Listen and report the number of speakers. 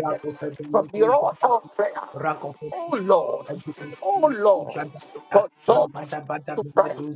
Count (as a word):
two